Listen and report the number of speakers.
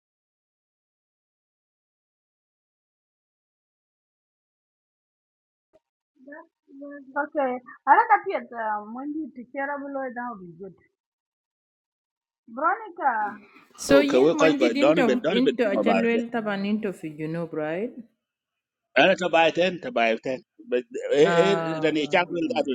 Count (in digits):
3